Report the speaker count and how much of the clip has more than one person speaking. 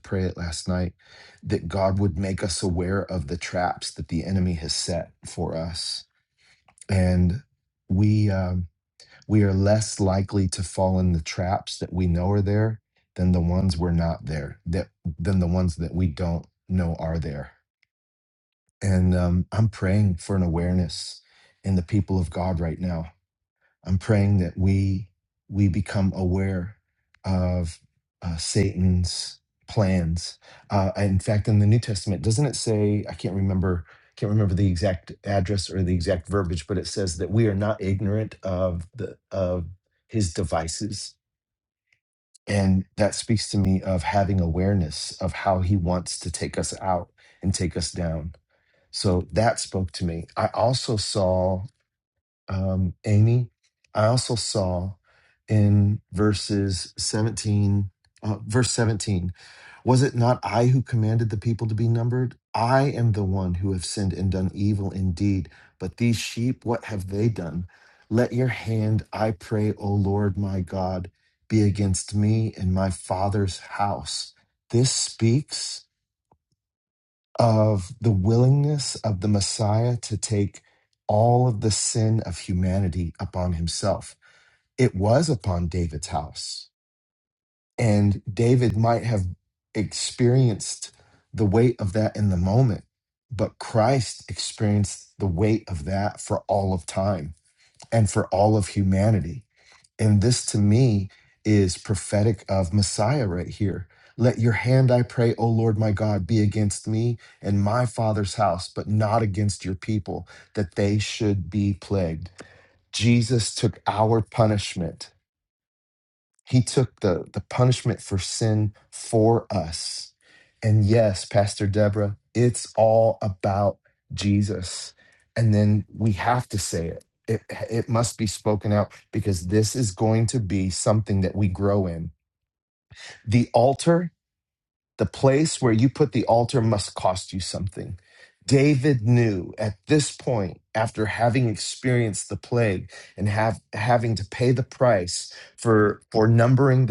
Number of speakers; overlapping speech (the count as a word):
one, no overlap